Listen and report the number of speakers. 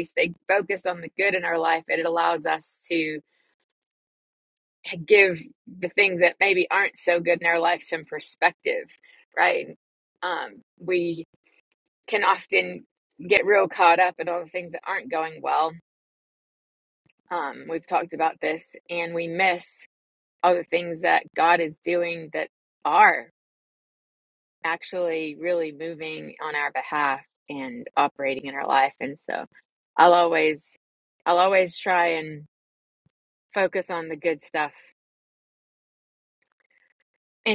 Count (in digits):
1